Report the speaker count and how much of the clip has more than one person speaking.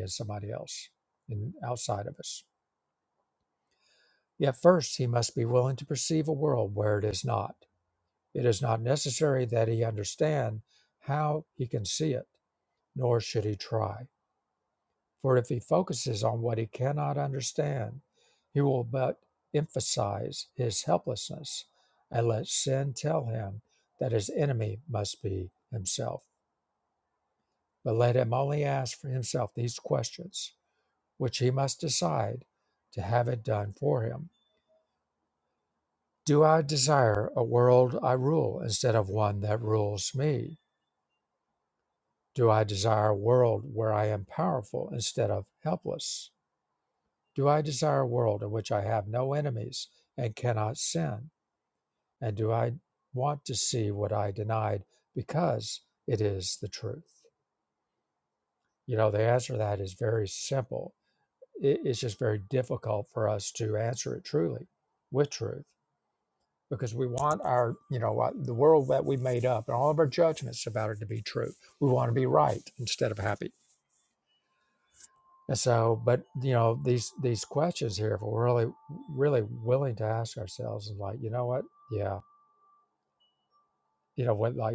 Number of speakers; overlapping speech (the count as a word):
one, no overlap